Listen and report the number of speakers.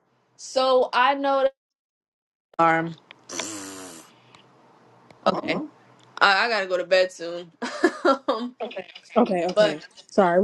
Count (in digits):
2